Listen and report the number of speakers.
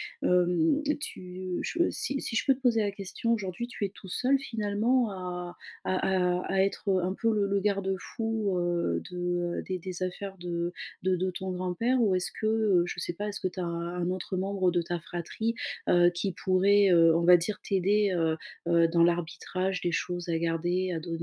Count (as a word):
one